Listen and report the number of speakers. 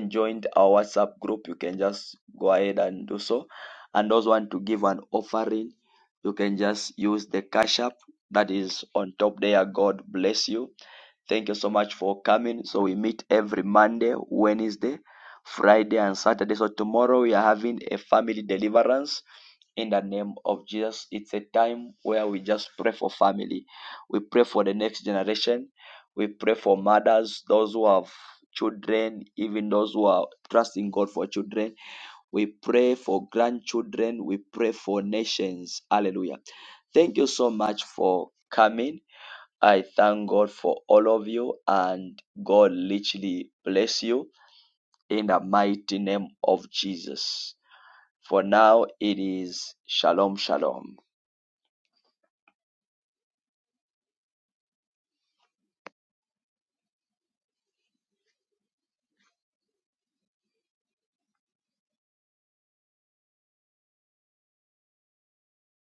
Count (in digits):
1